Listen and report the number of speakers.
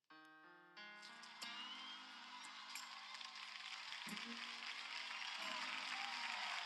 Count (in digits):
0